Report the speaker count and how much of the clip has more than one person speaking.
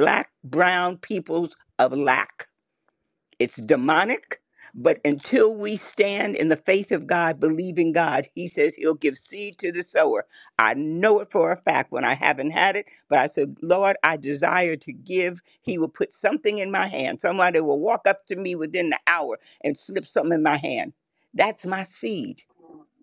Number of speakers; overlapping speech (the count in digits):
1, no overlap